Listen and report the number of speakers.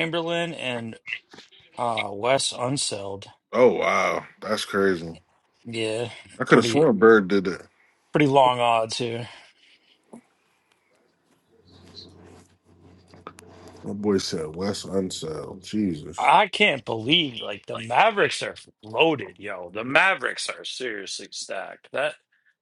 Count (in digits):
2